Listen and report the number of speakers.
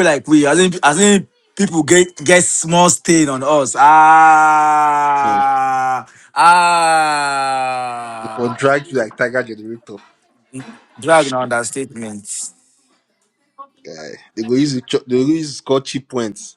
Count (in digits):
2